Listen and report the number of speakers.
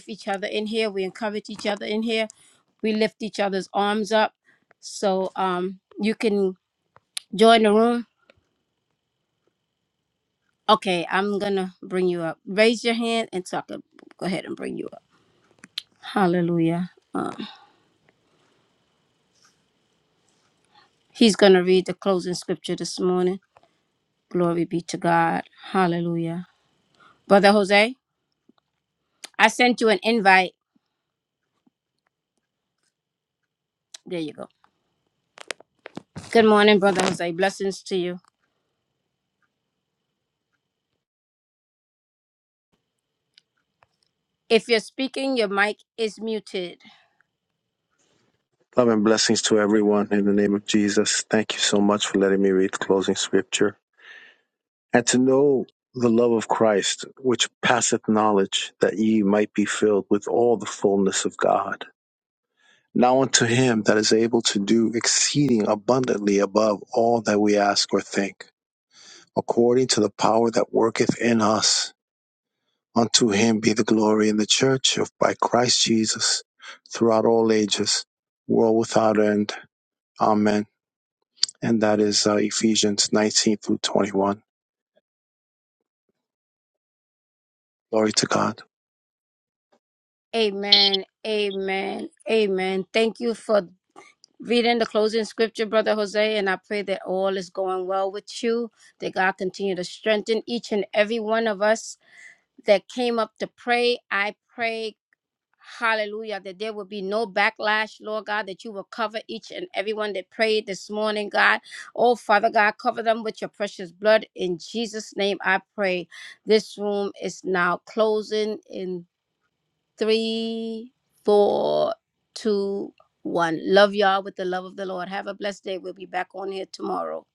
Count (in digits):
2